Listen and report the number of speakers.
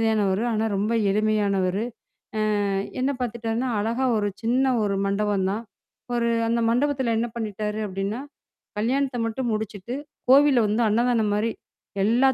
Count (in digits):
1